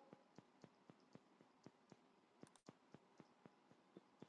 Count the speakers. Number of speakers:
0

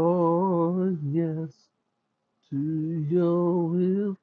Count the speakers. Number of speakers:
1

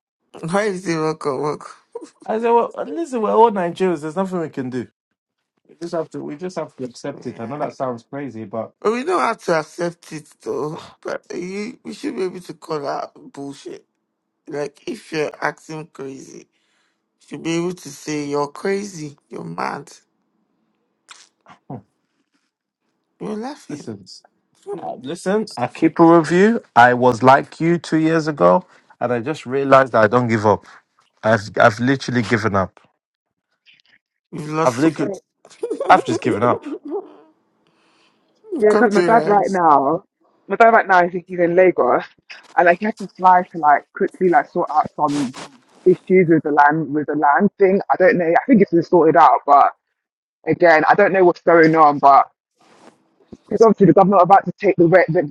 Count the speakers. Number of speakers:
3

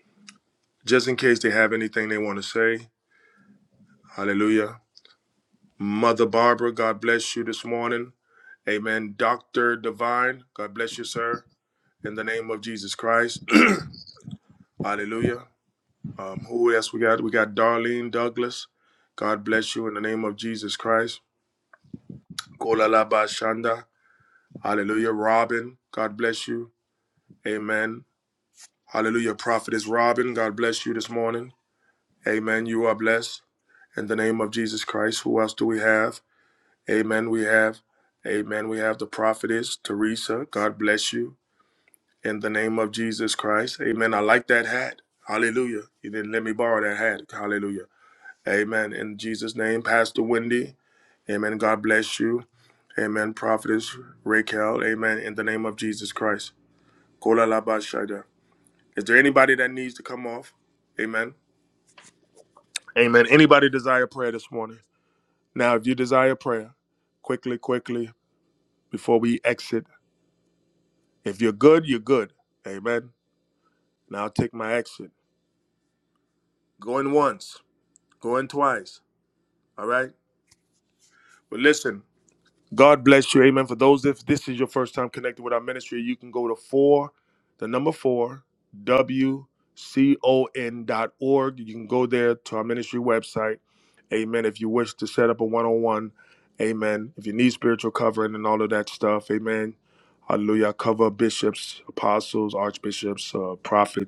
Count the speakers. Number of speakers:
1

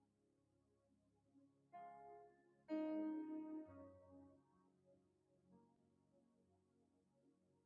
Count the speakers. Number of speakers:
0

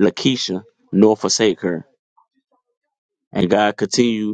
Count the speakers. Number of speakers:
1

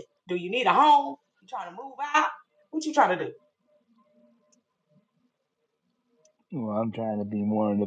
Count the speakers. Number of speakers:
2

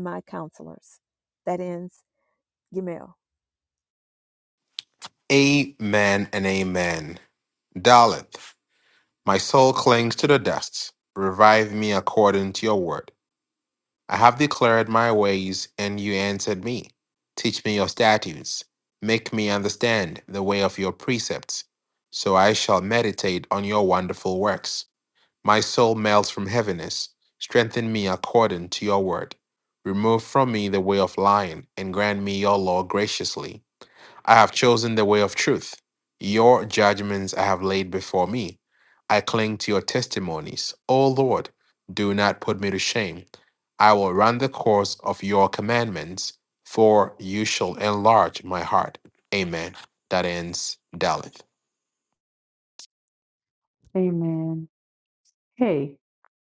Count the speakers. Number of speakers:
3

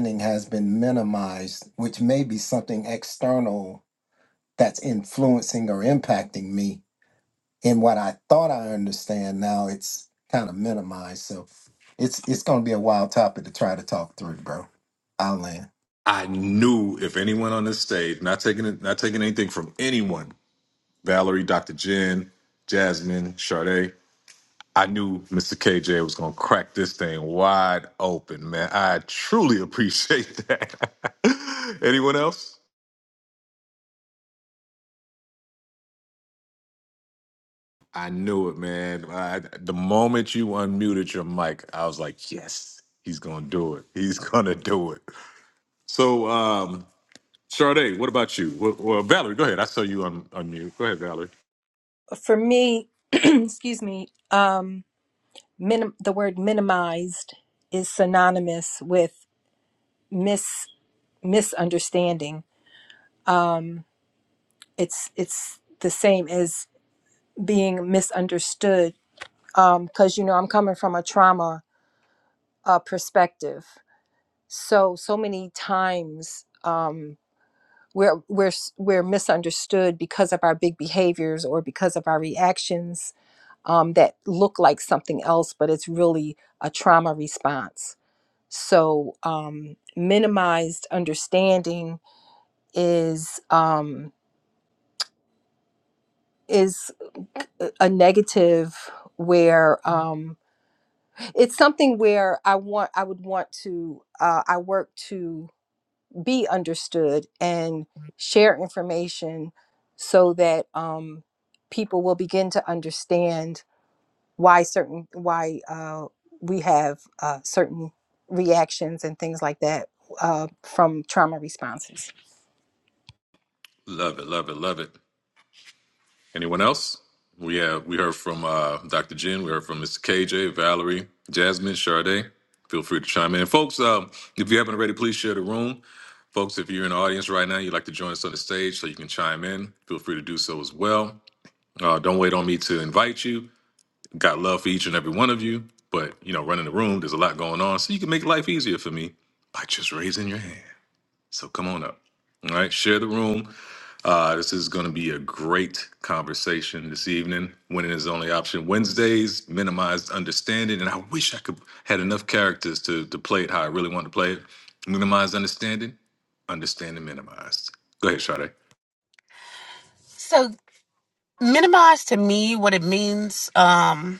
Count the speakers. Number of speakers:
4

